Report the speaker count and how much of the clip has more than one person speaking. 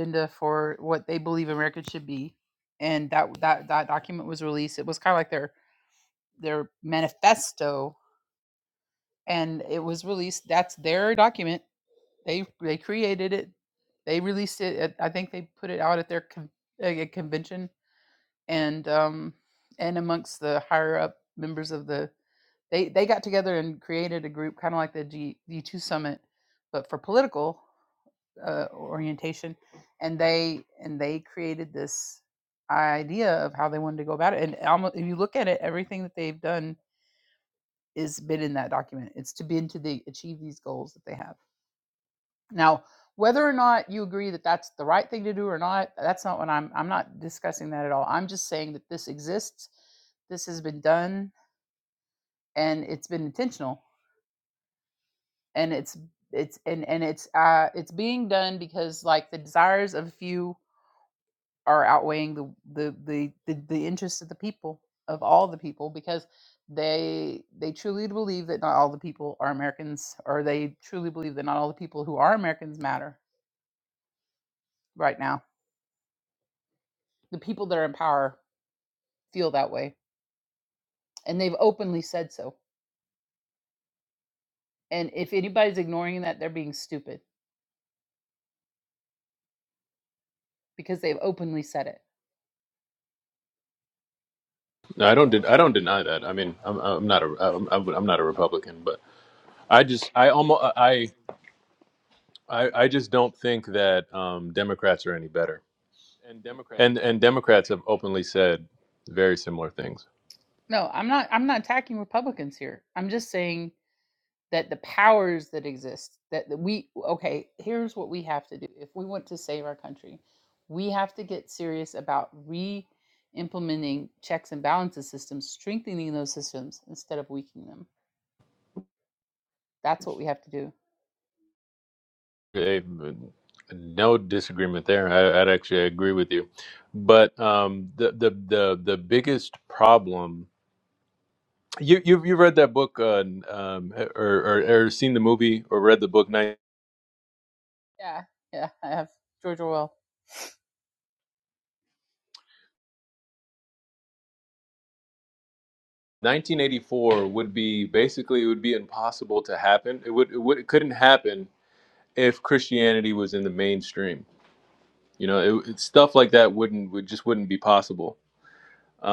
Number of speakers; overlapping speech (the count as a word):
two, no overlap